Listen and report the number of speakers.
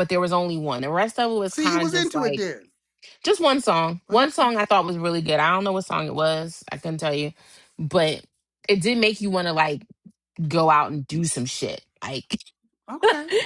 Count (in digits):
2